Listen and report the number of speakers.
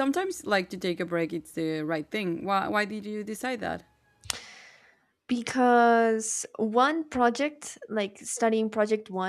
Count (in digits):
2